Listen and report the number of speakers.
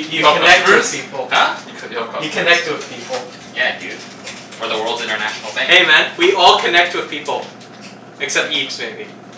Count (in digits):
3